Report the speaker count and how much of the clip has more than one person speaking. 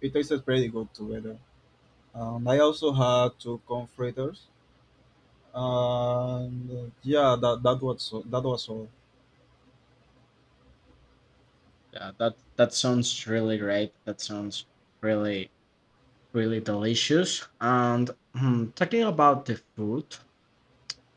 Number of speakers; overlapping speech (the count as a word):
two, no overlap